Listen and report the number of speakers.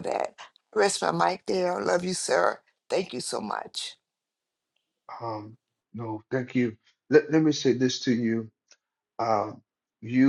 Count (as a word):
two